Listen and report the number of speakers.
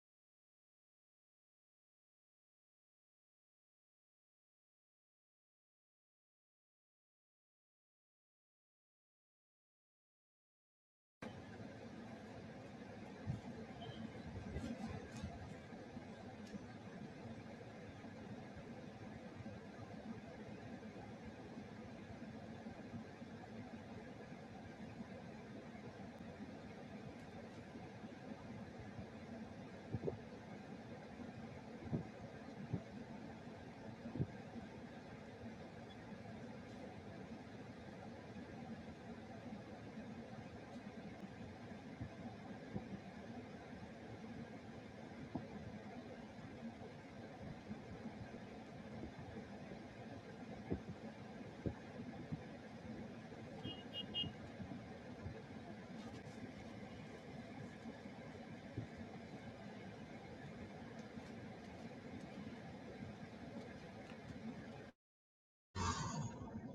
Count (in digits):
0